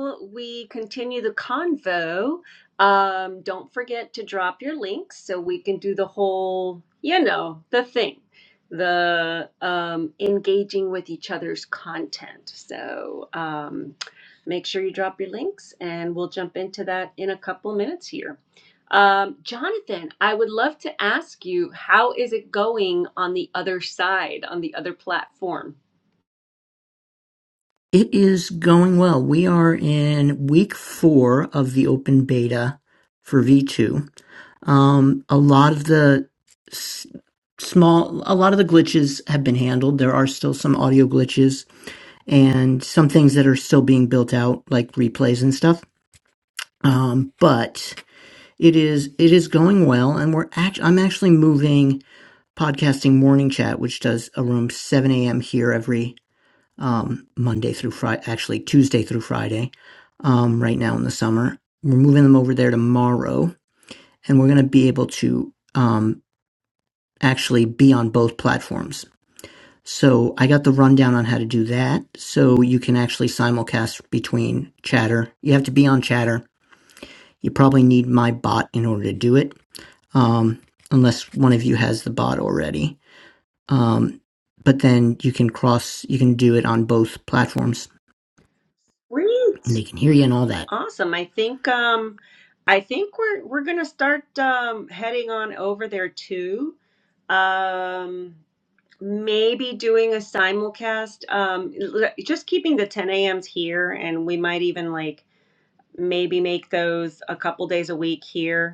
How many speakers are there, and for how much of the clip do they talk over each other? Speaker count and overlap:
two, under 1%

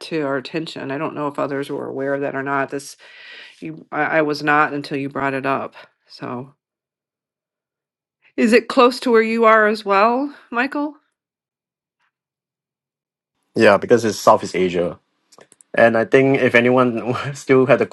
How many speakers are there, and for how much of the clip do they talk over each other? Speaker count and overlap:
two, no overlap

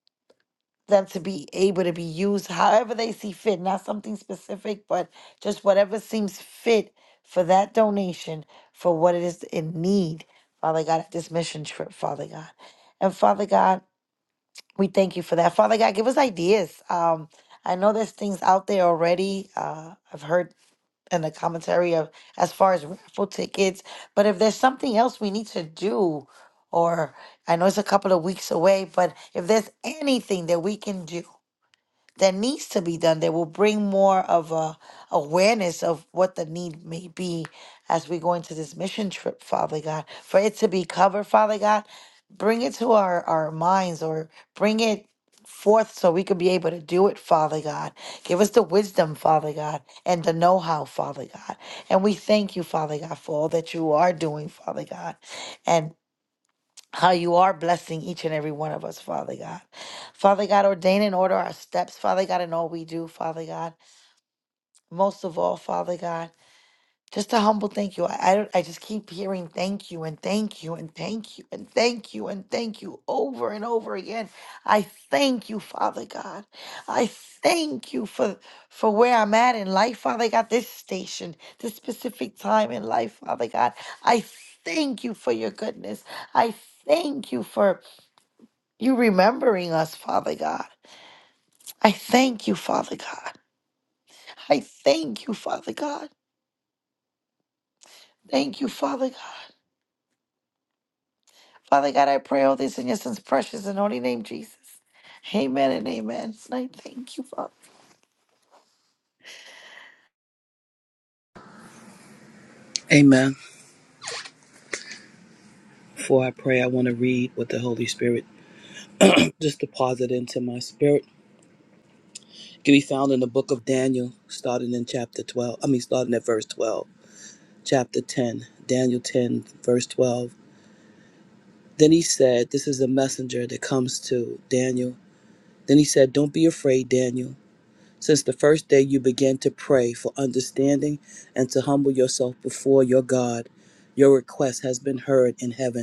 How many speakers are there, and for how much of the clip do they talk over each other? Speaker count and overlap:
two, no overlap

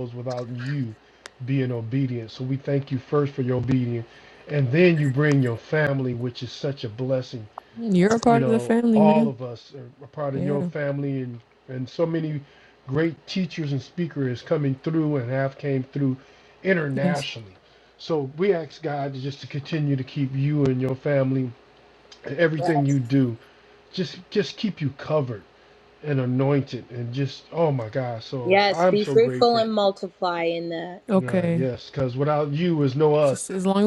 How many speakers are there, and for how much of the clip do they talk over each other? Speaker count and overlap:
three, about 10%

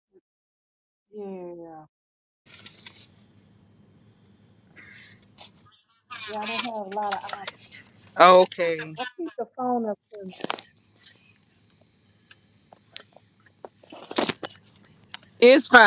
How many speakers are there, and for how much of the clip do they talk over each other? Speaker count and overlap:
two, no overlap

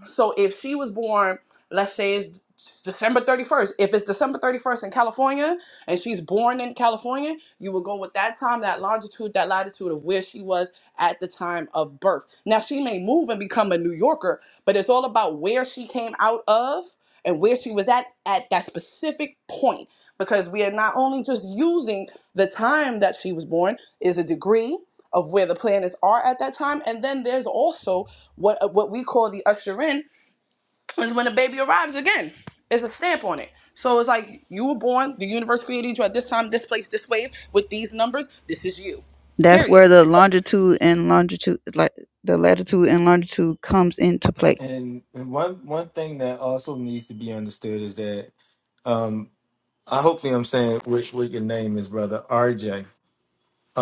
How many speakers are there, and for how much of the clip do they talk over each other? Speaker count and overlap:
three, about 1%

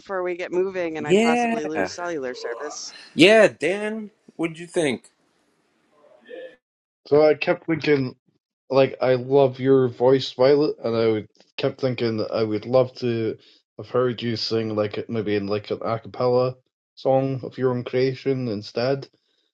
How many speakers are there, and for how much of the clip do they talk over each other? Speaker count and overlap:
three, about 5%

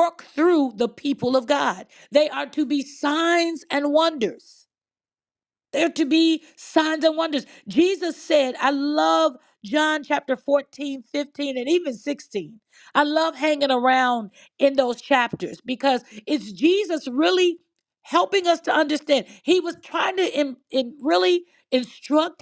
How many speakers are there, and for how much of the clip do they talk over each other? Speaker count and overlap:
one, no overlap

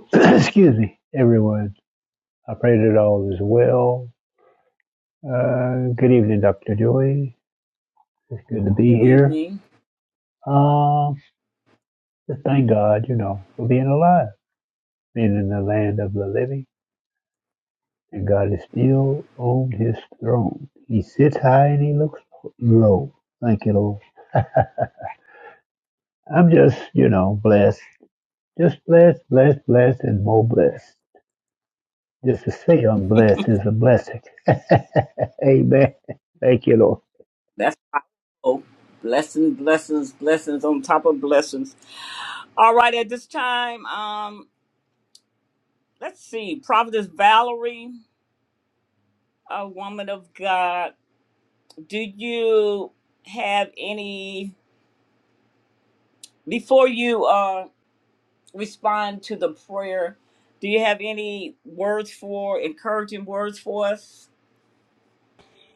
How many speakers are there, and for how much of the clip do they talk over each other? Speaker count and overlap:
two, about 1%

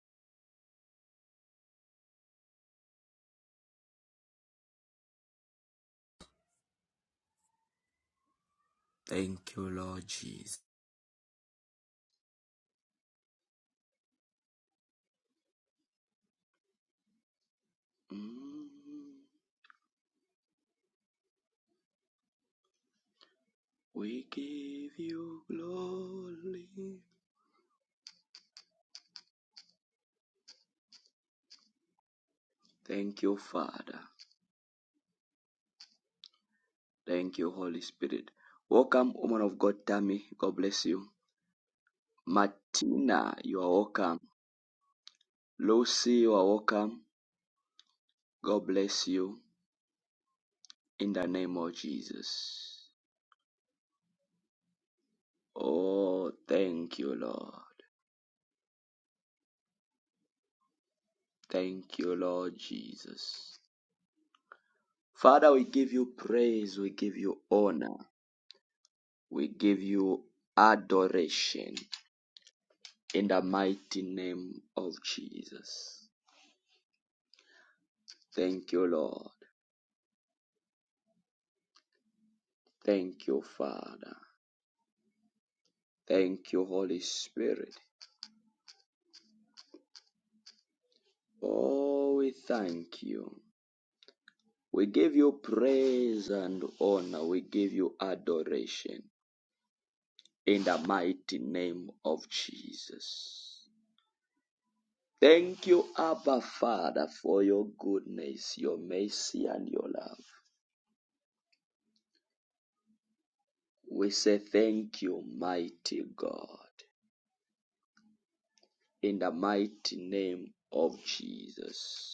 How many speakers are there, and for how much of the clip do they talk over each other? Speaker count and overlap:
one, no overlap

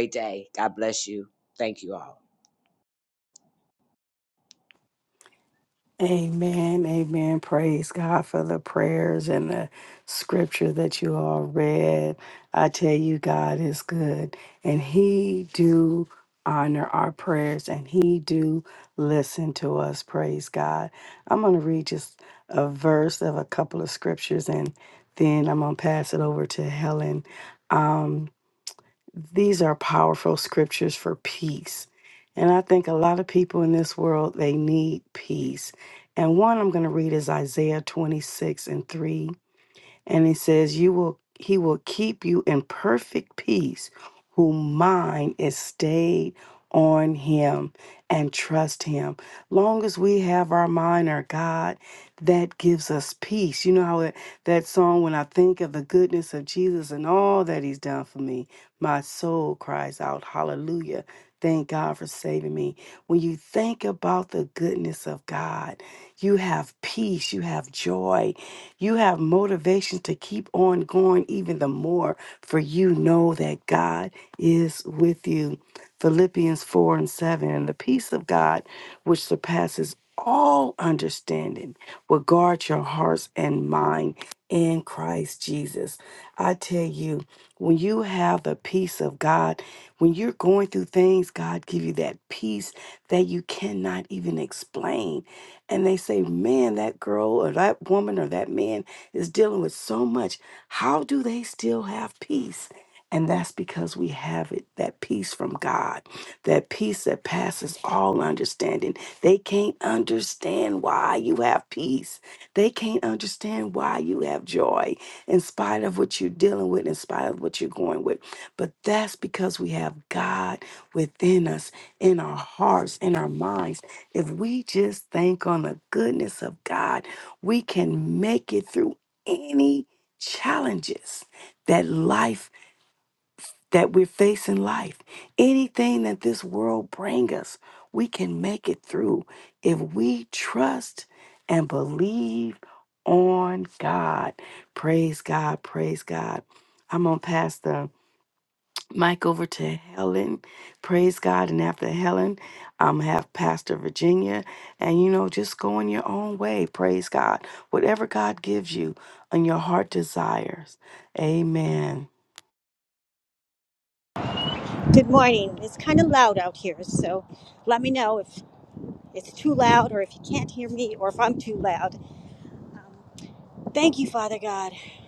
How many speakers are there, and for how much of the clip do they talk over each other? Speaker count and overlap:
three, no overlap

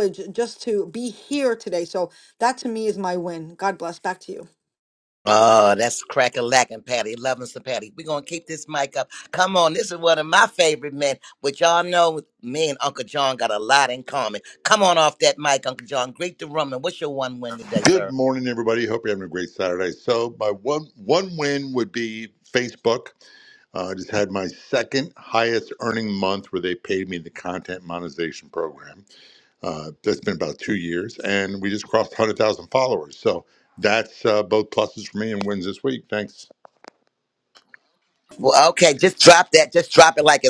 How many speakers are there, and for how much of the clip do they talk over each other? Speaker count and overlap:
three, about 1%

